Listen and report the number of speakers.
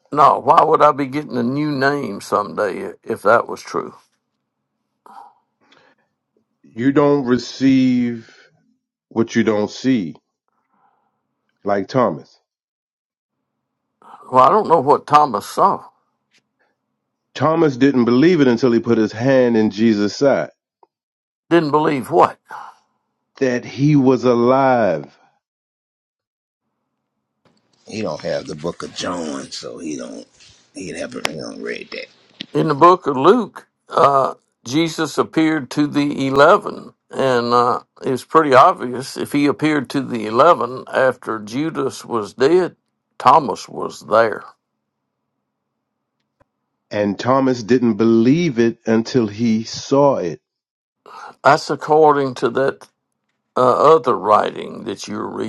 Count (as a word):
three